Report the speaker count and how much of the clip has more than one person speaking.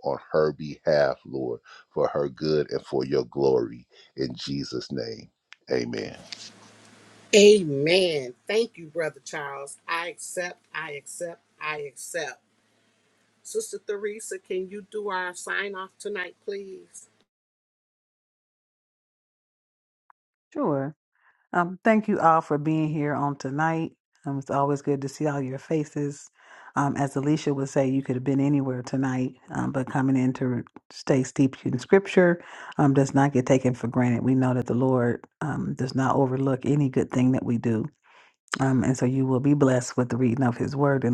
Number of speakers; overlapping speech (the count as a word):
three, no overlap